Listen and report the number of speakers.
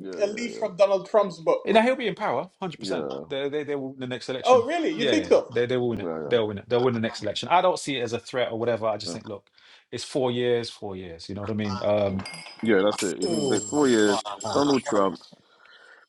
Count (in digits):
3